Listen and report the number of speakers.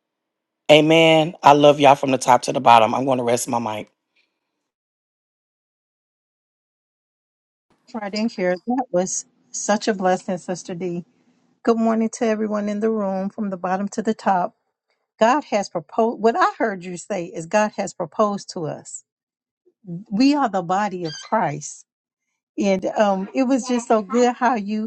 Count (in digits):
2